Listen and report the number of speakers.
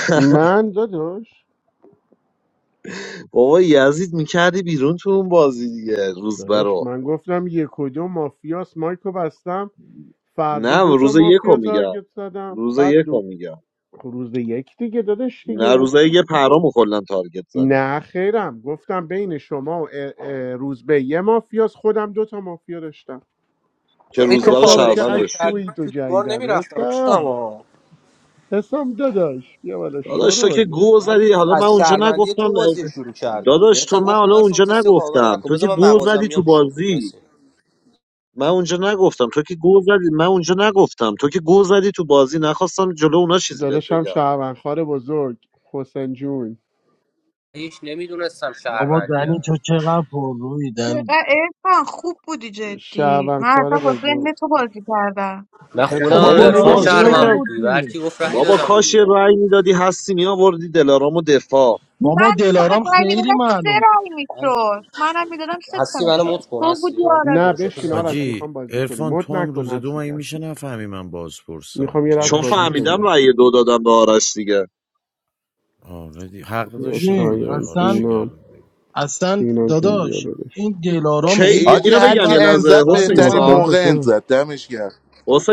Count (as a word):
seven